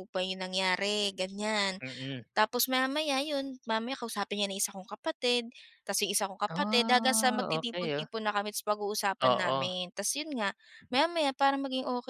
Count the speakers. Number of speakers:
2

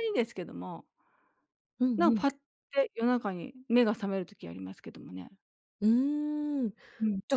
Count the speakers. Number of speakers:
2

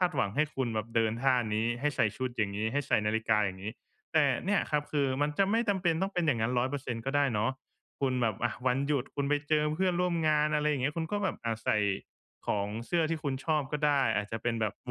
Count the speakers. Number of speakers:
1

